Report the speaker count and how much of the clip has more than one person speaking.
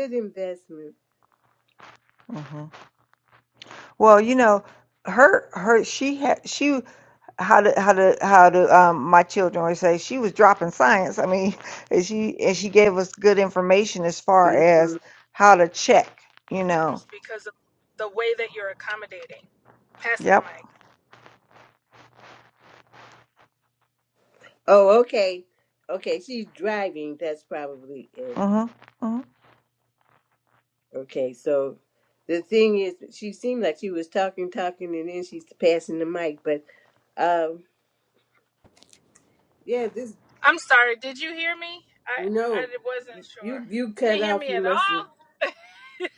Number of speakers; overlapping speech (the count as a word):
three, about 5%